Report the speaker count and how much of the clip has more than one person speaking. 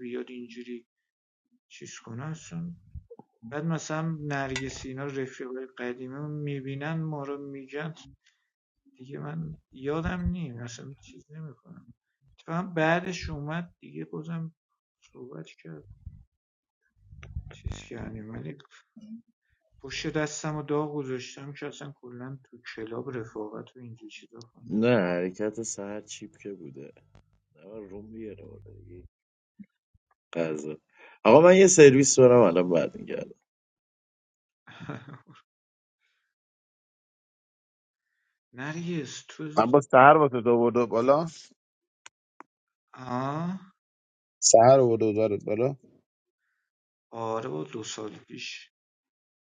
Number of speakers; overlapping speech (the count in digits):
3, no overlap